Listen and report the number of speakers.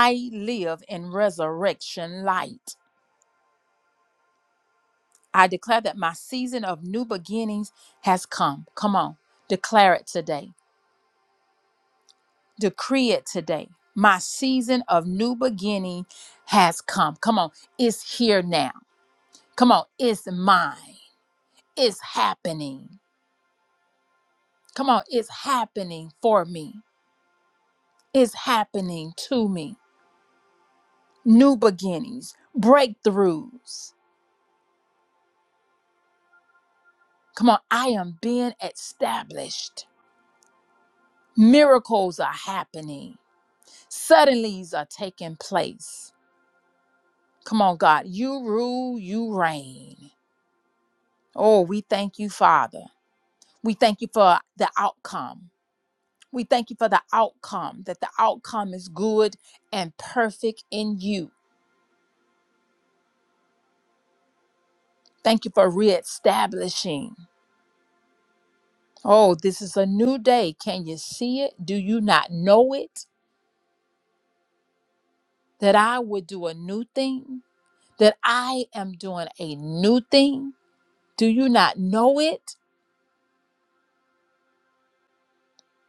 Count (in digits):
1